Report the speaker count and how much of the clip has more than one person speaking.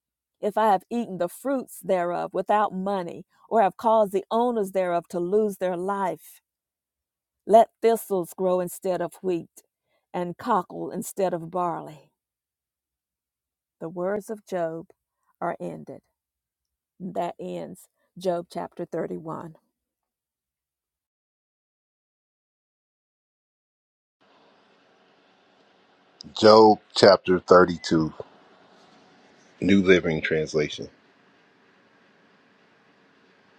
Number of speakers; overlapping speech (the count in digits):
2, no overlap